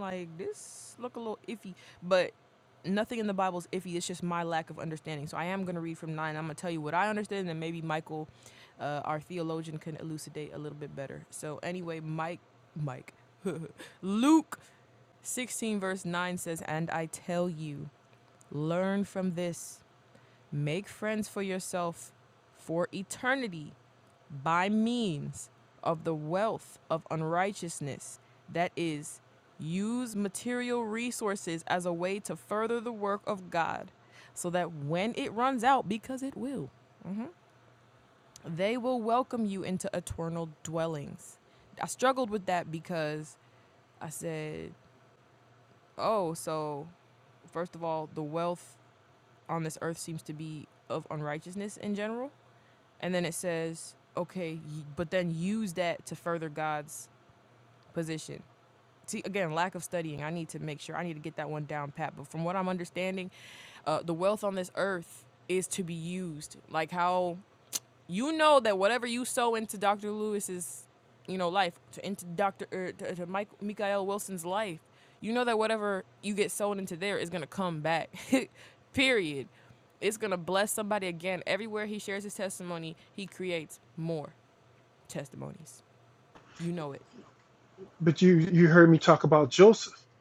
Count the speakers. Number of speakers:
2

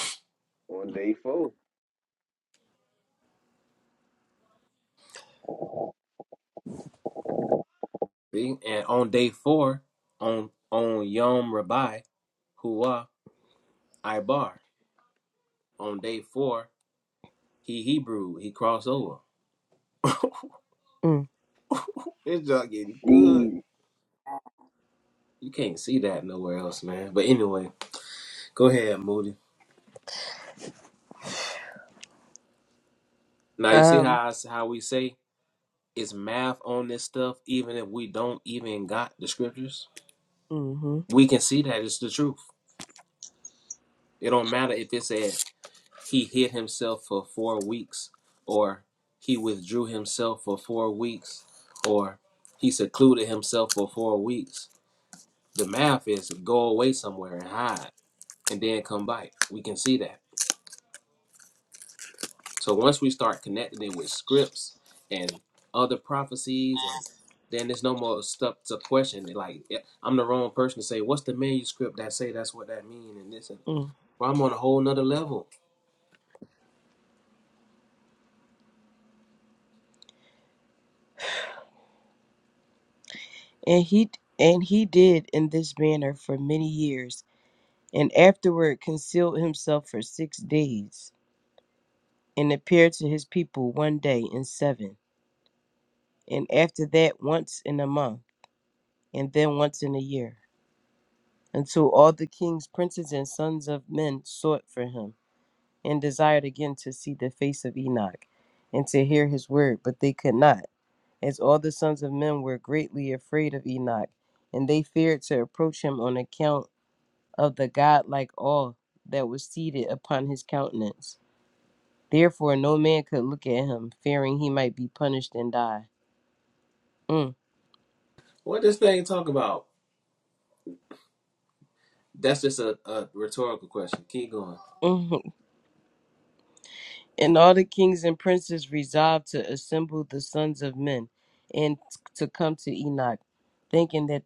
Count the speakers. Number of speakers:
3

